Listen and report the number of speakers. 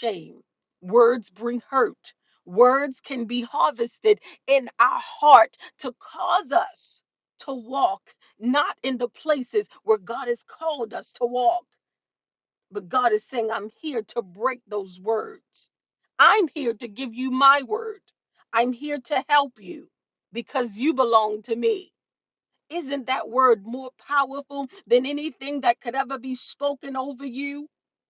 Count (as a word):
one